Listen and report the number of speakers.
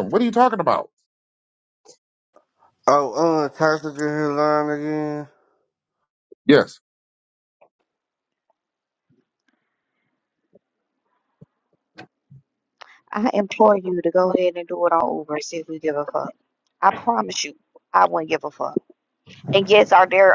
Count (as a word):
three